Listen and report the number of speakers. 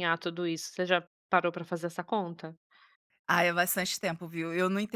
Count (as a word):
two